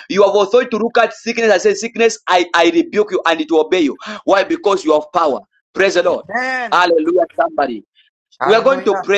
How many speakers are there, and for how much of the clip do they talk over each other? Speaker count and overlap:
2, about 9%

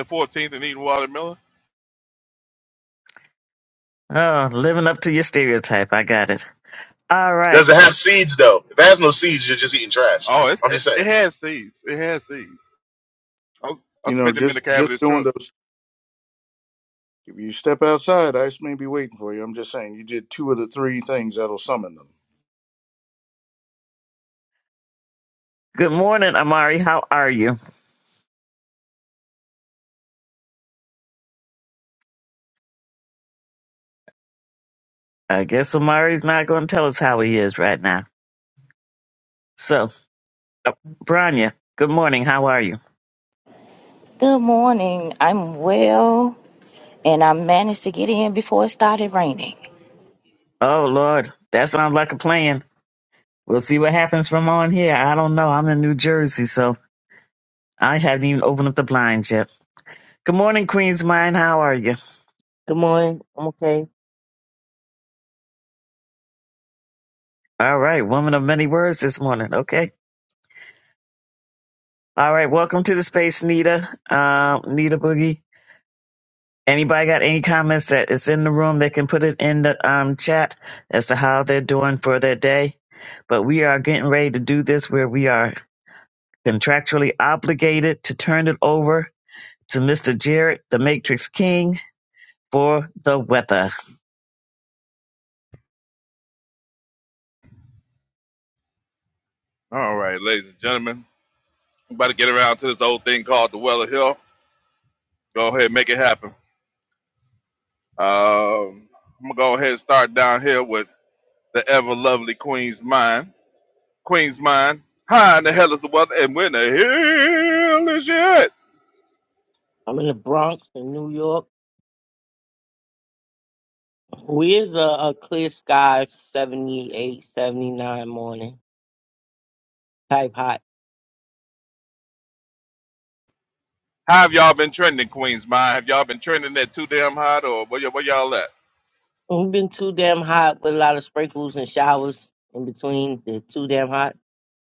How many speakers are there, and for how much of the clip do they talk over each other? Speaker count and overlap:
6, about 1%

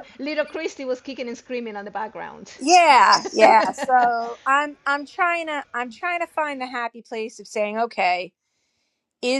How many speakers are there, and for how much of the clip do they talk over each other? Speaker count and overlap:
2, under 1%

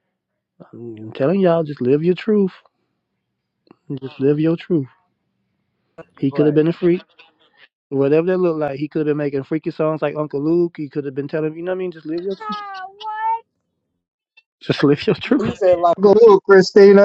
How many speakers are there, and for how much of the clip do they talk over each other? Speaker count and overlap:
3, about 4%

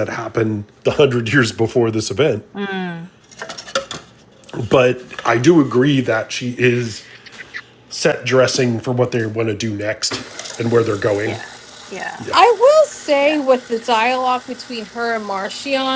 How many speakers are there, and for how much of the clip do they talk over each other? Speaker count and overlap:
3, about 7%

